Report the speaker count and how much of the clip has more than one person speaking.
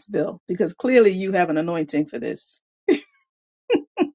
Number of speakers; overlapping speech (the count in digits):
1, no overlap